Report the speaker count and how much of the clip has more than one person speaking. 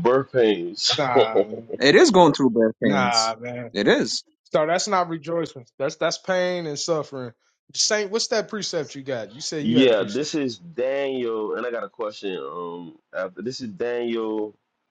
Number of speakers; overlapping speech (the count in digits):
3, about 8%